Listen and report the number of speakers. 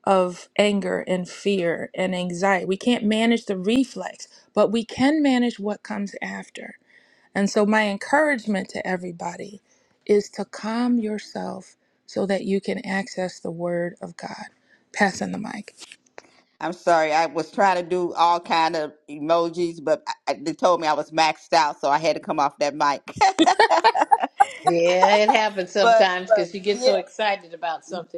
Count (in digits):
3